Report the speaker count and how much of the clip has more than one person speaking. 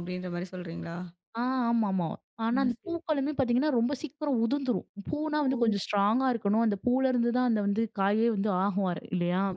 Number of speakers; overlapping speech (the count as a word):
two, about 4%